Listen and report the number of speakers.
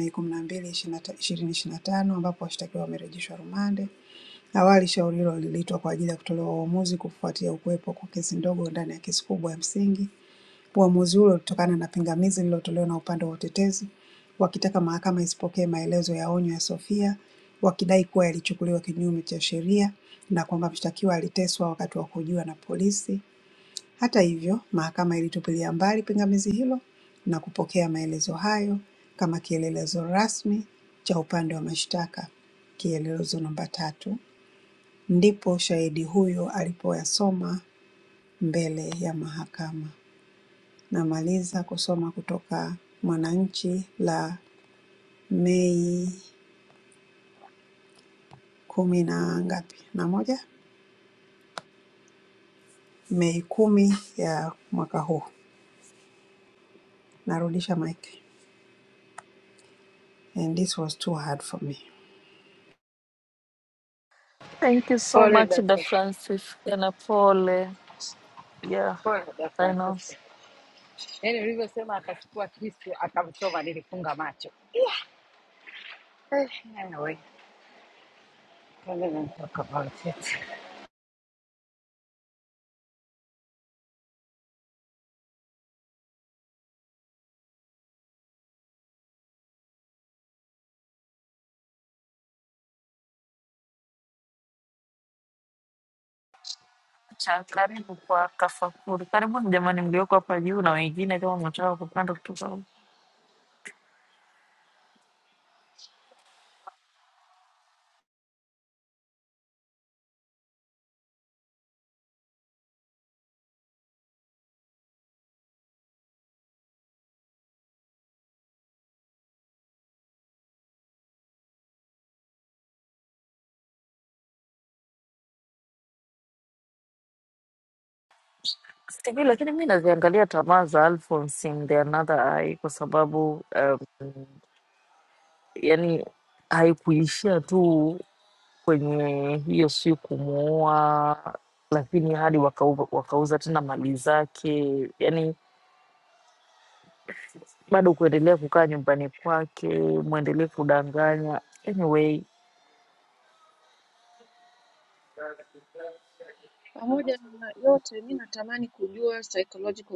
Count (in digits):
4